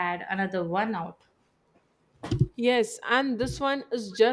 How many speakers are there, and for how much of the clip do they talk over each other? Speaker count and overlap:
two, no overlap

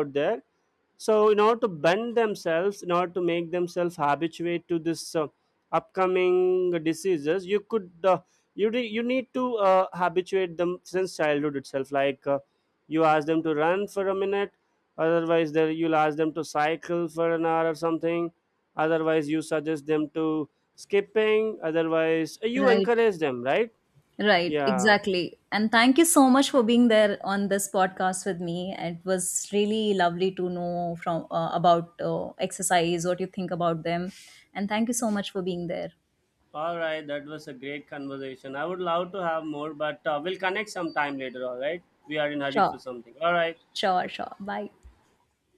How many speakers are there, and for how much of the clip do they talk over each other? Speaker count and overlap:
two, about 2%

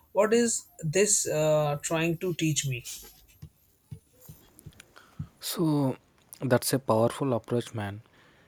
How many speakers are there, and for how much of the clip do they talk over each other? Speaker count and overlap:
two, no overlap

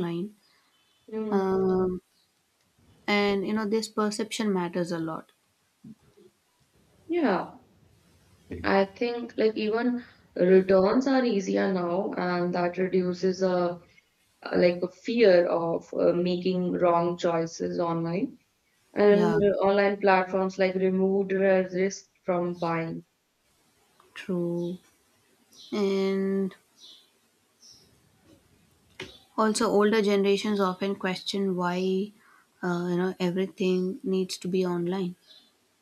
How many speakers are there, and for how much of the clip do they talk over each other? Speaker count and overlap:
two, about 2%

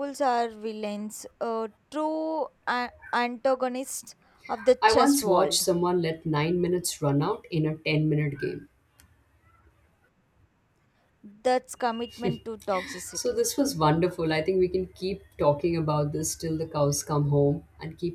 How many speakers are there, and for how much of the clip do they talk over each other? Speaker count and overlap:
two, about 5%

